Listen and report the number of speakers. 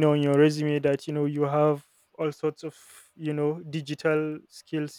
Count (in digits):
1